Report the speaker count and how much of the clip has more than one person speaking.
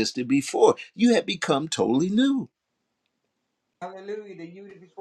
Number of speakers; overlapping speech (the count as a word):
two, no overlap